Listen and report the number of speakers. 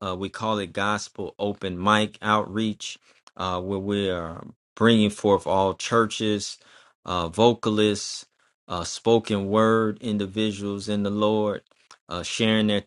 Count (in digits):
1